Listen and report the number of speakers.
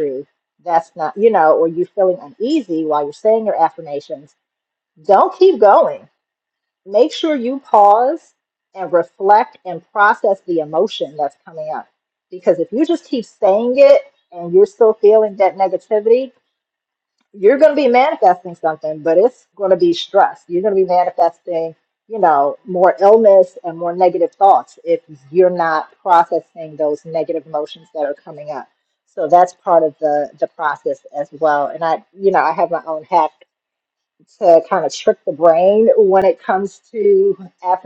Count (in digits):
1